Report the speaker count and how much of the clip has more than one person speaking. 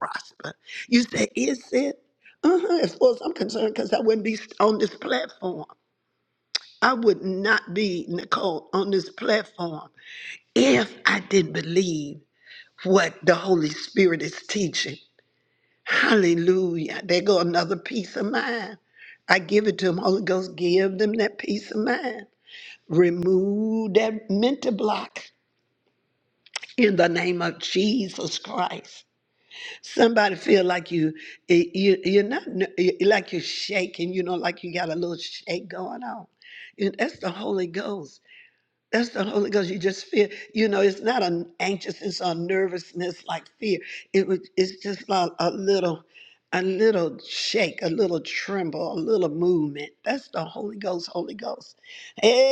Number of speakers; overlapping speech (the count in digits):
1, no overlap